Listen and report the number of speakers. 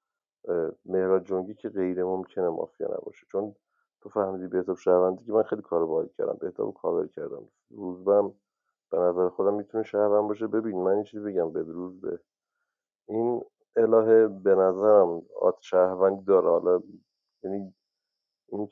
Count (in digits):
1